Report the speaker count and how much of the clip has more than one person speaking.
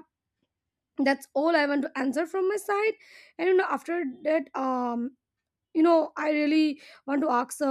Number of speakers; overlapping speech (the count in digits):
1, no overlap